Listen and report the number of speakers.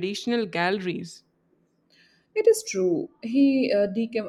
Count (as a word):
two